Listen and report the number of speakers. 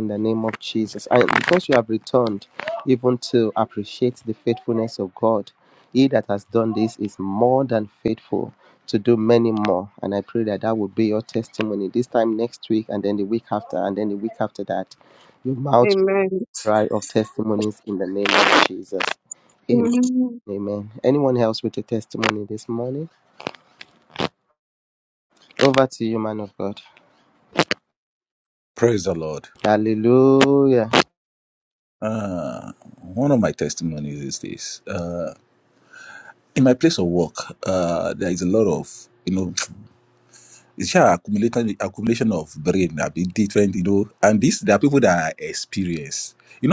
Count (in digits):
3